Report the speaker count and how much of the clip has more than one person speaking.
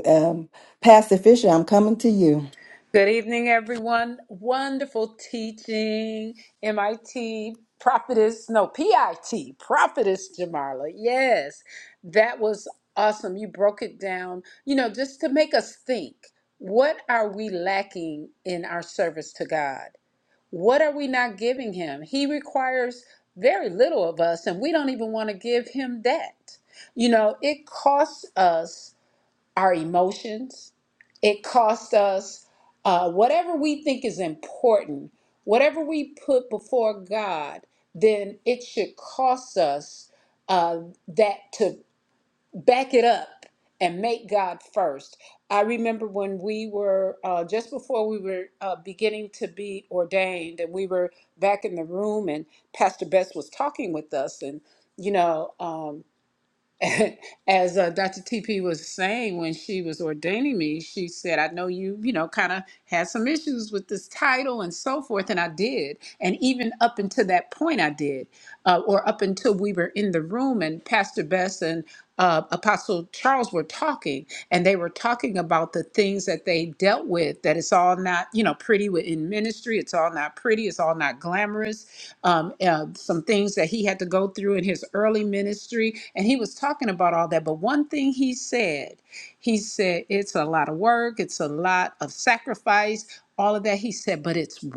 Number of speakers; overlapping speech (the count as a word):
two, no overlap